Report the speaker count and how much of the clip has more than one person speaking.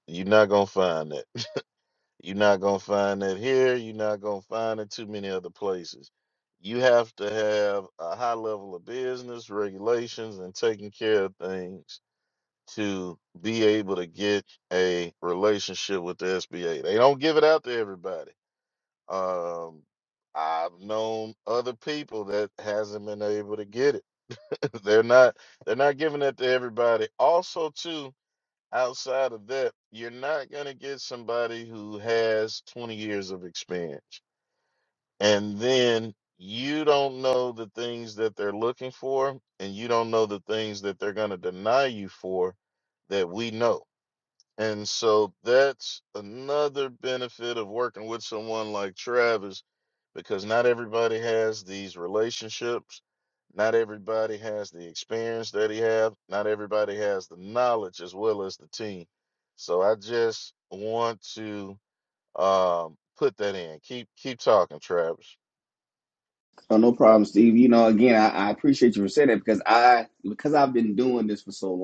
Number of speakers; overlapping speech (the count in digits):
2, no overlap